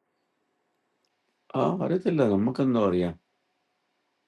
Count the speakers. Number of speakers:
1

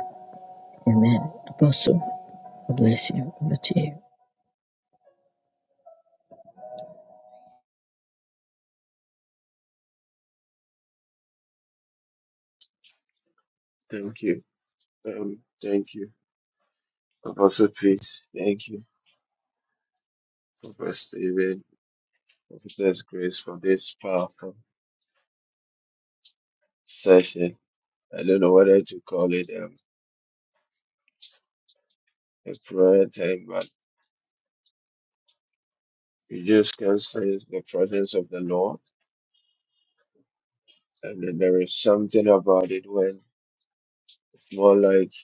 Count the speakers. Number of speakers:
2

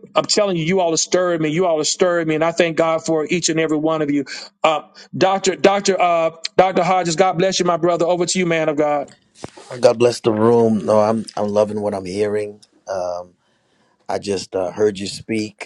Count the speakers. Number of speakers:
2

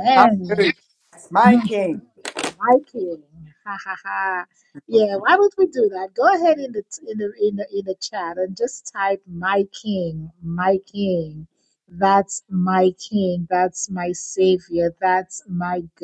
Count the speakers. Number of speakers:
2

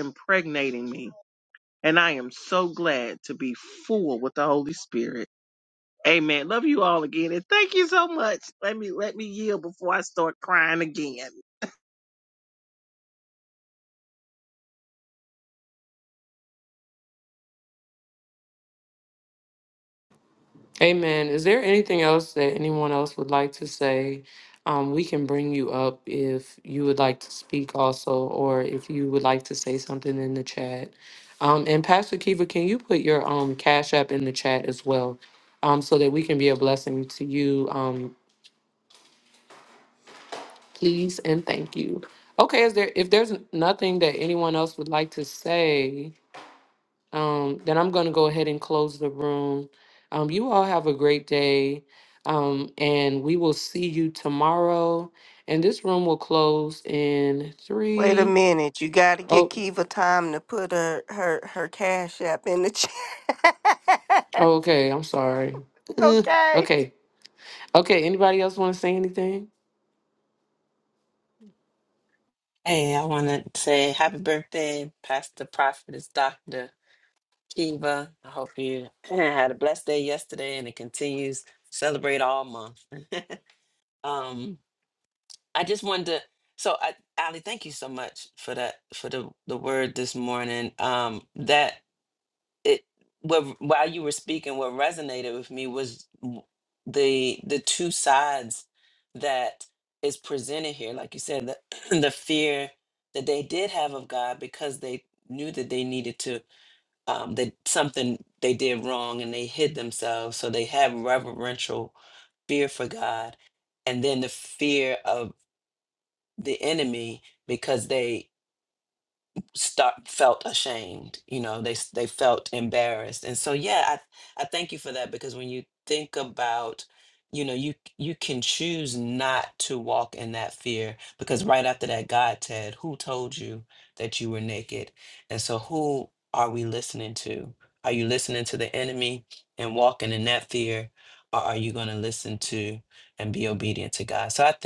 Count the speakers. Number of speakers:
4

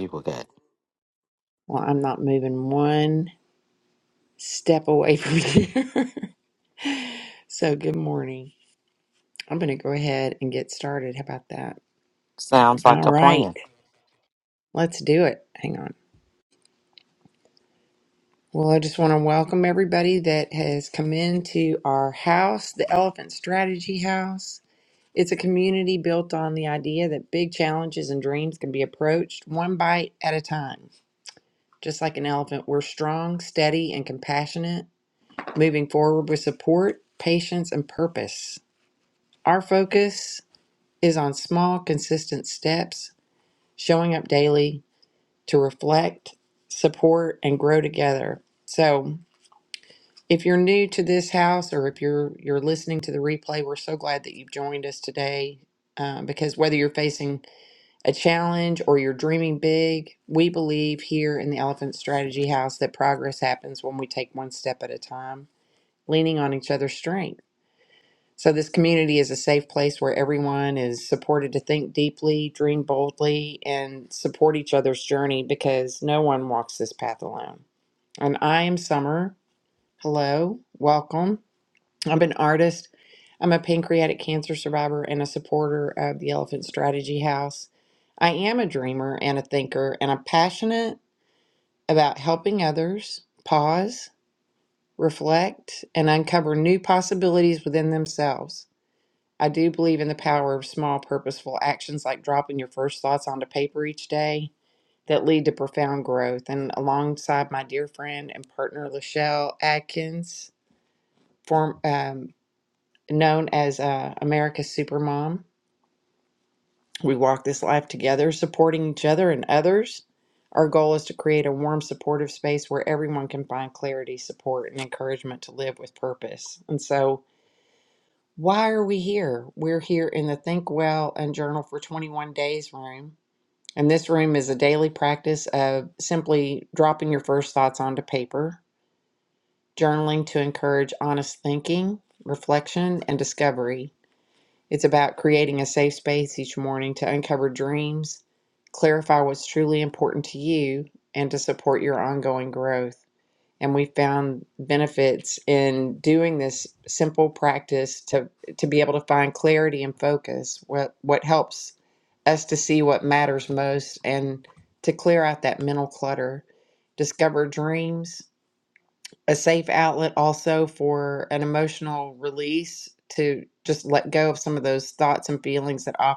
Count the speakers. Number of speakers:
2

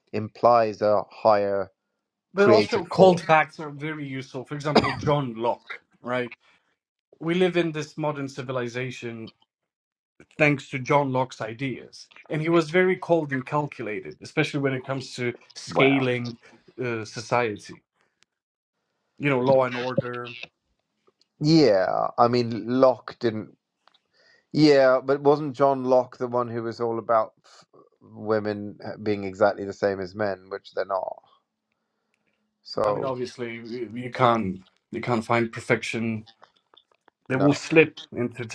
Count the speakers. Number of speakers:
2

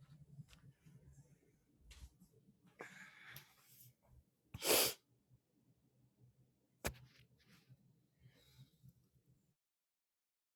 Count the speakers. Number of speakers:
0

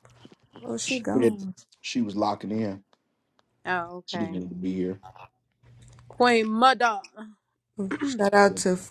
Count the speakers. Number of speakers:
3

